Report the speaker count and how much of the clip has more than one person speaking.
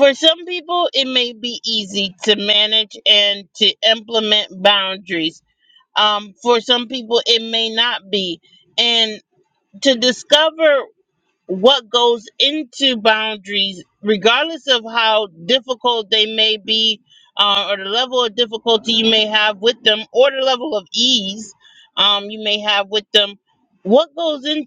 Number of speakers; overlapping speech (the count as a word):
one, no overlap